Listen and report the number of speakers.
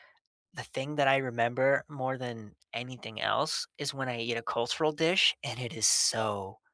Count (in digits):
1